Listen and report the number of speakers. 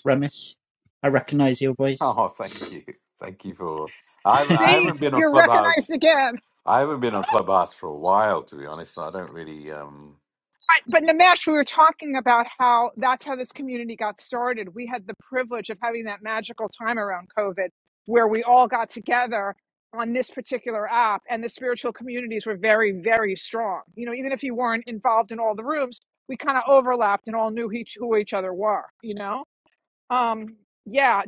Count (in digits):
3